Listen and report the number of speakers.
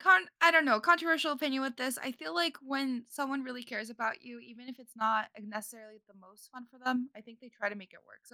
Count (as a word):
one